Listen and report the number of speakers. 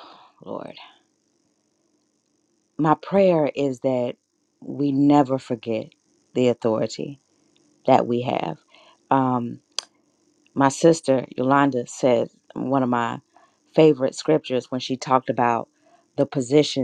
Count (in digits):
1